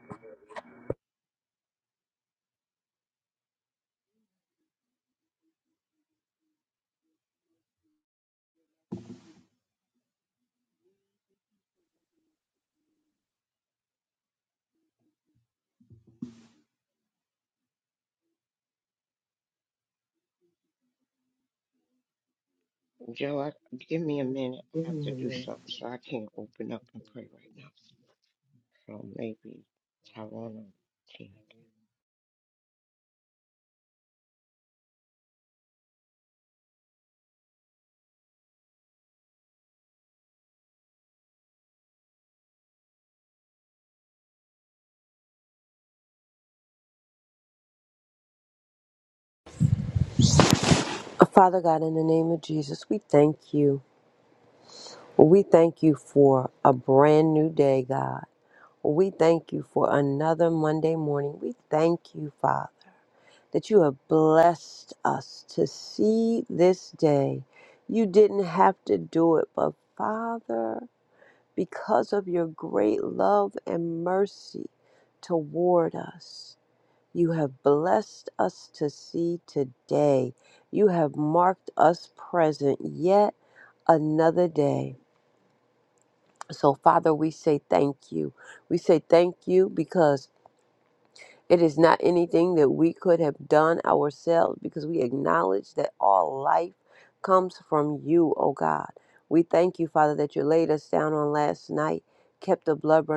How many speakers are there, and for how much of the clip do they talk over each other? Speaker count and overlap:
two, no overlap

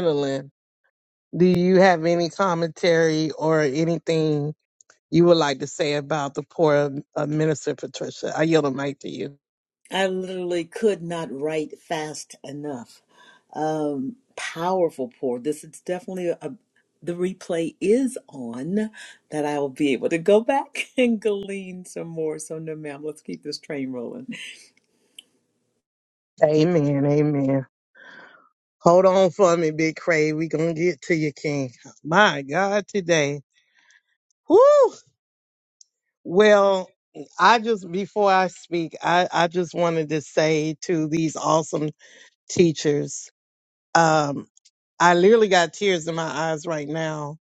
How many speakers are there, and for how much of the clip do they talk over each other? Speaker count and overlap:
two, no overlap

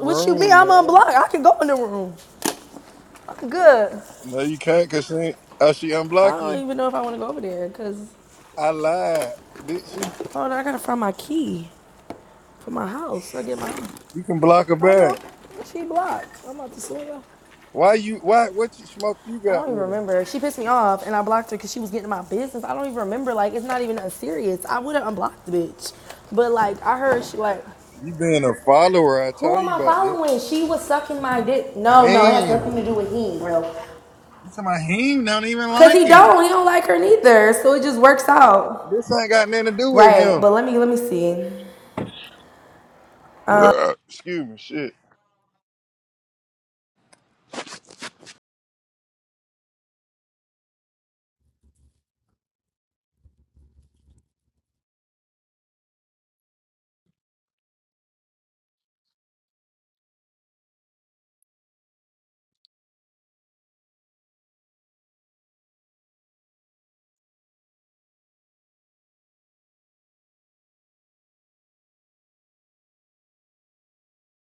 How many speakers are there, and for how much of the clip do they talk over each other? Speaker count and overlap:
two, about 7%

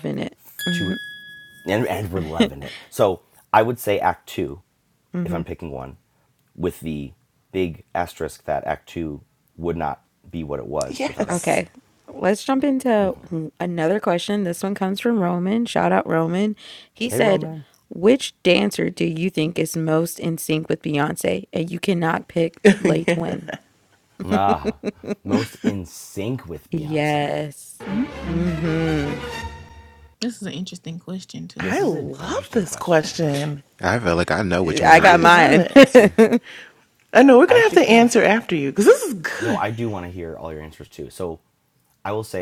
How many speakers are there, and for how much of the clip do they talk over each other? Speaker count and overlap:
five, about 14%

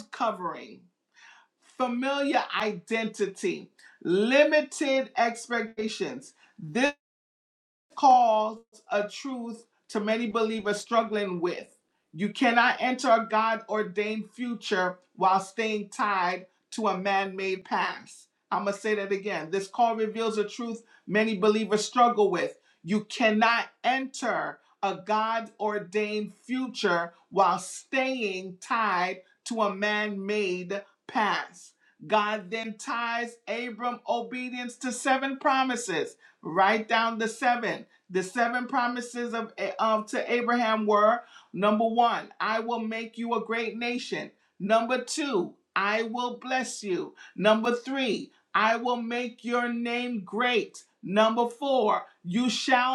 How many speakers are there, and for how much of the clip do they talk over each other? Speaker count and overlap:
one, no overlap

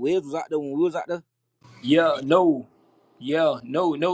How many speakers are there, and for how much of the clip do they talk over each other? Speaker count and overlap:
two, no overlap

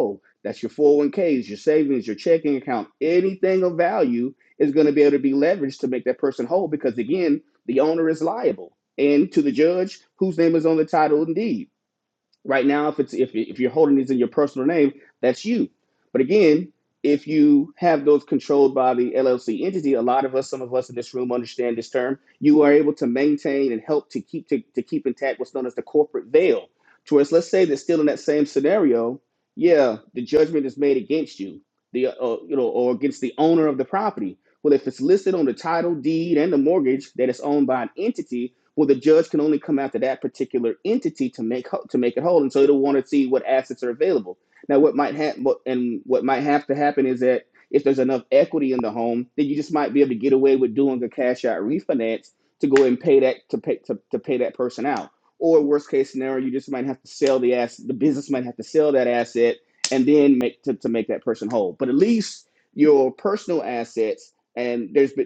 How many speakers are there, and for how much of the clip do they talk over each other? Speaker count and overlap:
one, no overlap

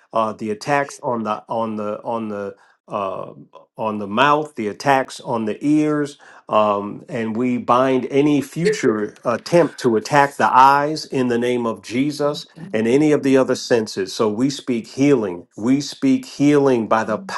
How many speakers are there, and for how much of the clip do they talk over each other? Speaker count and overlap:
one, no overlap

